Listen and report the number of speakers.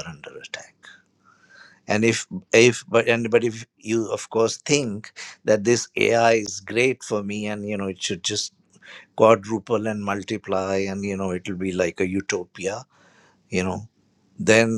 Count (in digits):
1